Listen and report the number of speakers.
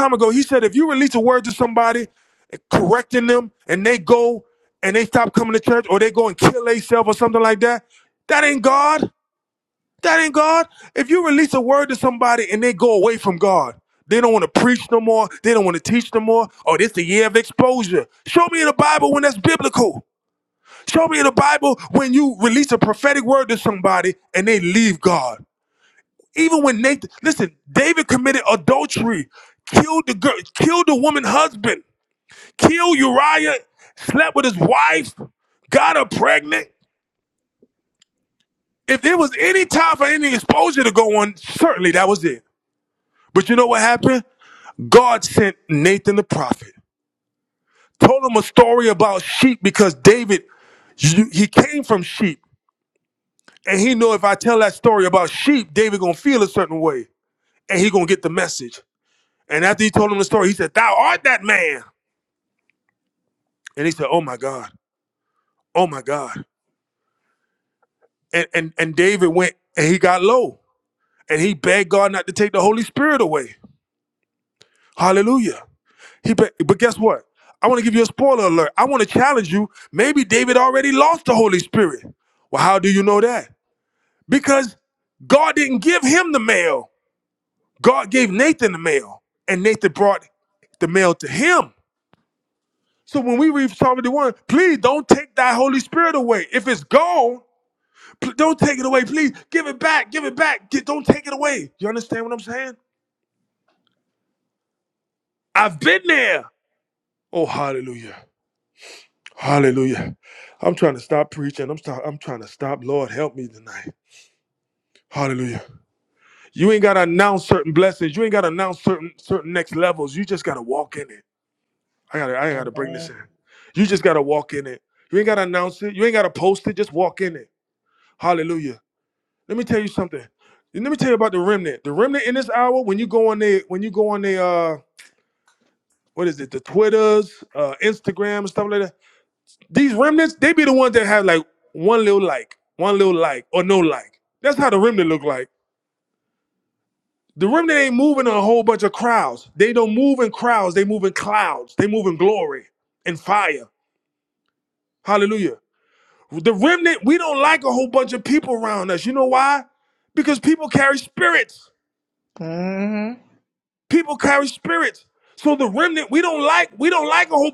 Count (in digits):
2